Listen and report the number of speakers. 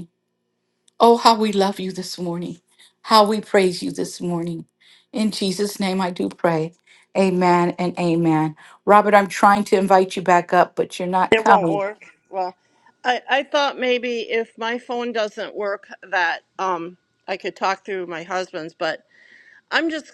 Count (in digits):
2